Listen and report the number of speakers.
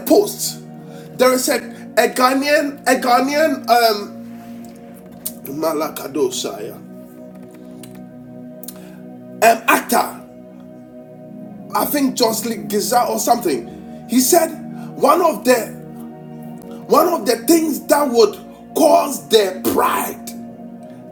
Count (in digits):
1